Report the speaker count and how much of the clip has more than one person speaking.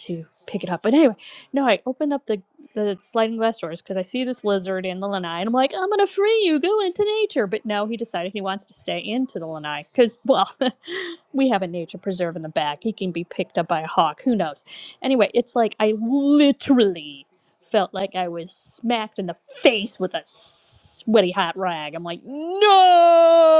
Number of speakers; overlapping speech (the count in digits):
1, no overlap